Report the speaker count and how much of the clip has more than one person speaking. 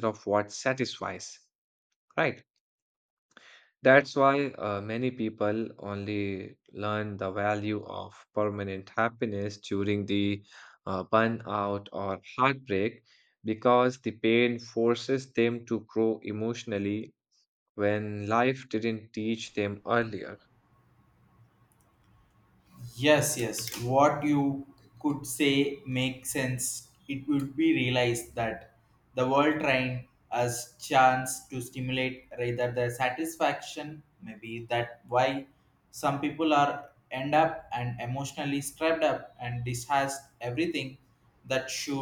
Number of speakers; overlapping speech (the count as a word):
two, no overlap